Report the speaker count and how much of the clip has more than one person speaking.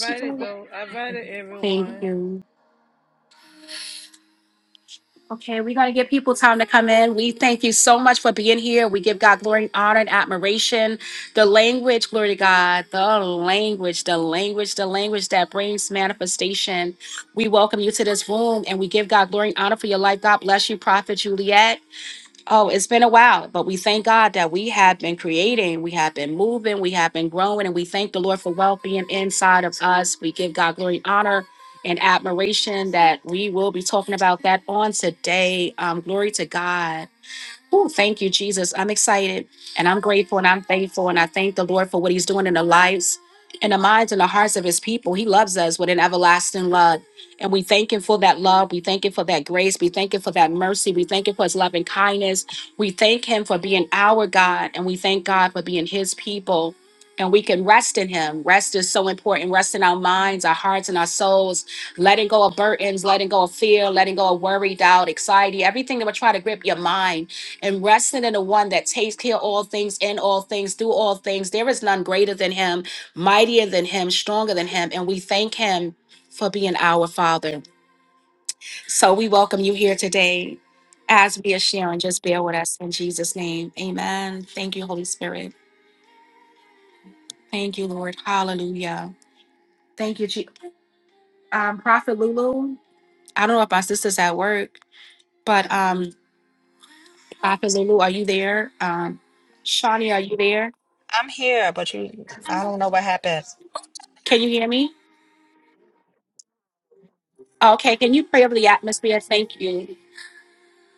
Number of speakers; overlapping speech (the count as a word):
three, under 1%